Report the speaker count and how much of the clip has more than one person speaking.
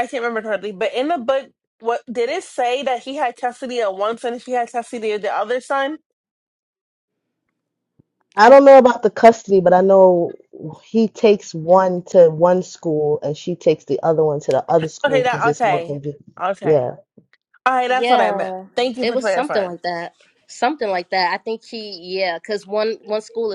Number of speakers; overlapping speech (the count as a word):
three, about 12%